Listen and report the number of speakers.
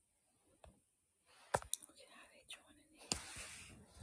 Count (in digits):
0